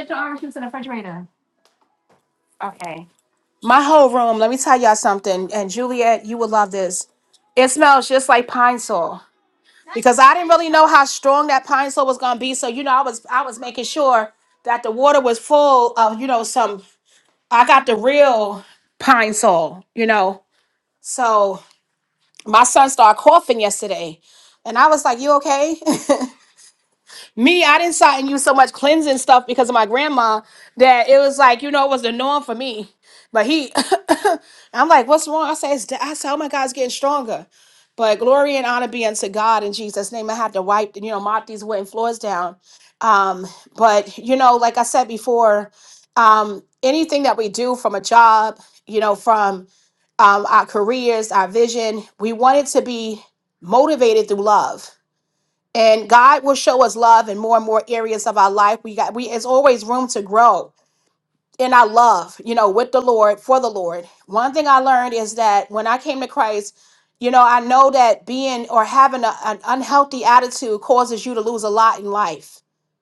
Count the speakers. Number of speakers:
one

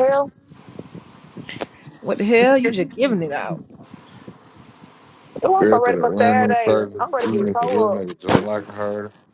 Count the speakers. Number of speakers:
three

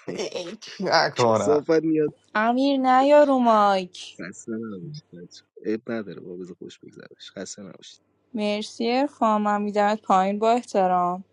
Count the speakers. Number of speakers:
three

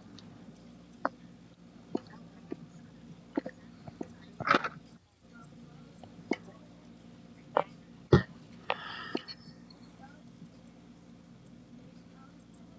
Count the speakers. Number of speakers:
zero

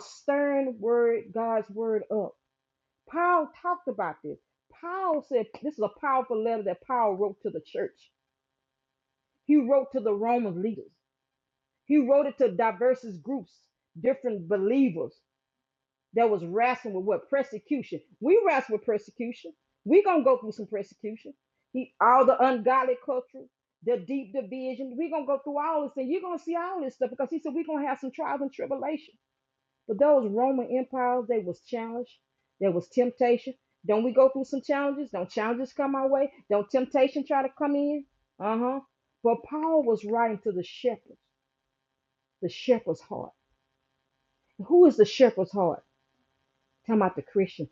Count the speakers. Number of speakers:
one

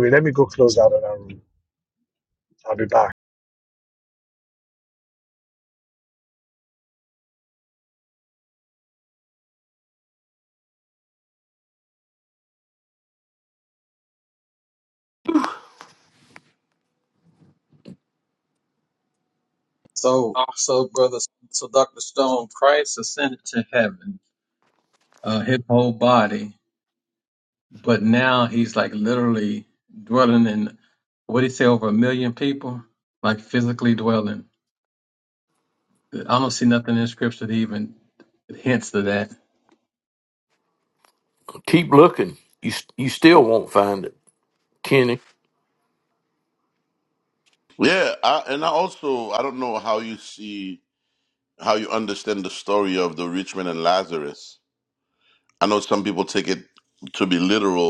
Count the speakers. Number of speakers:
four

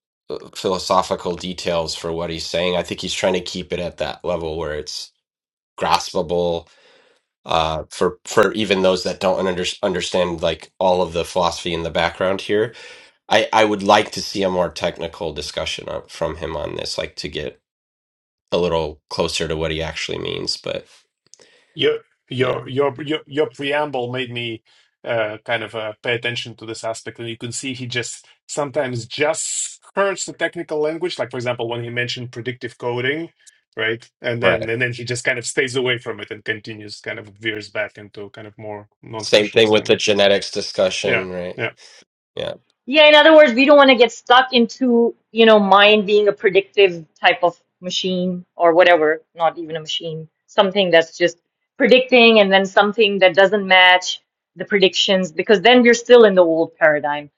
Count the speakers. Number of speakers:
three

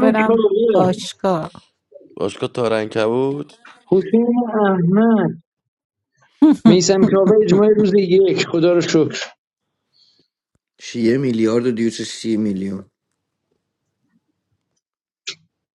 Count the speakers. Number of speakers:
four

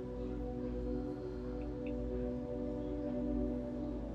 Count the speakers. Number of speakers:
zero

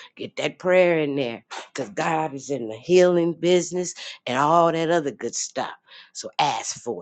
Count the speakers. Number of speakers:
one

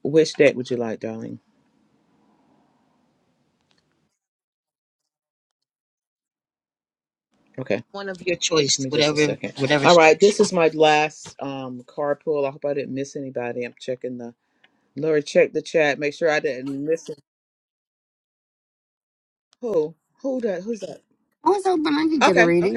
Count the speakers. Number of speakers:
three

